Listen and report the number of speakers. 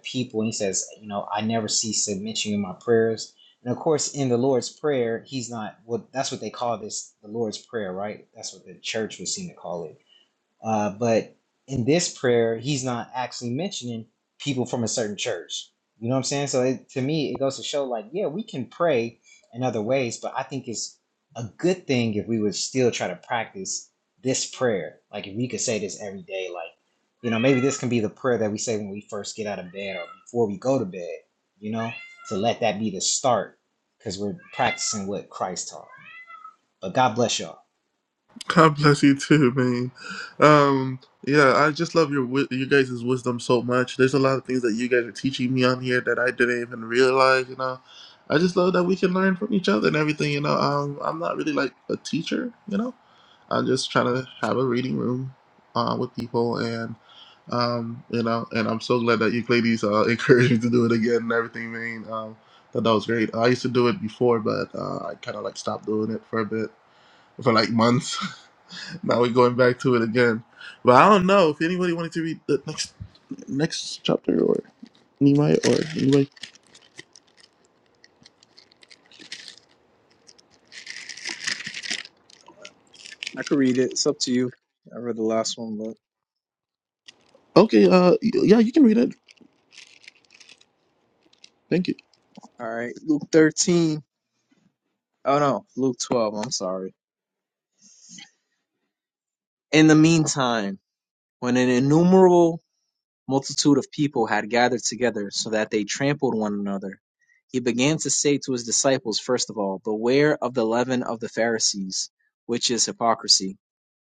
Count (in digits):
3